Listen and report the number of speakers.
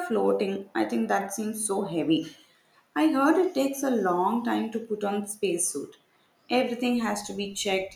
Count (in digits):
1